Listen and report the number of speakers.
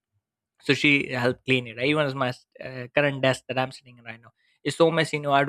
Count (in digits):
1